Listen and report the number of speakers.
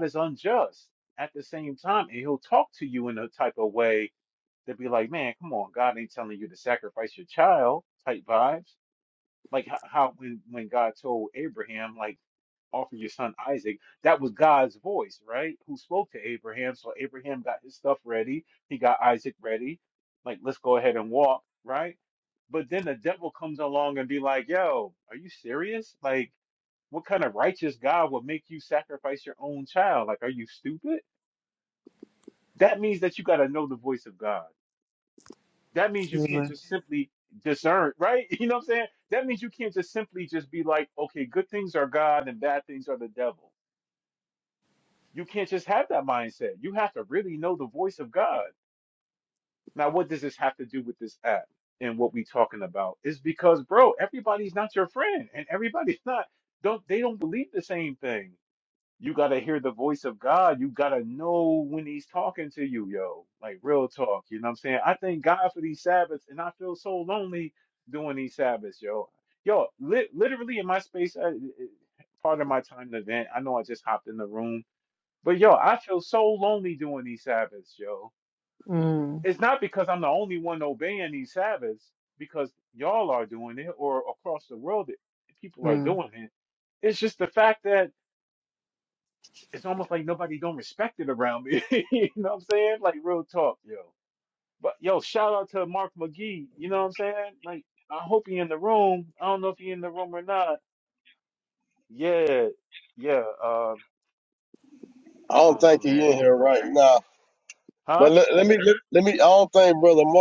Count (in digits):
3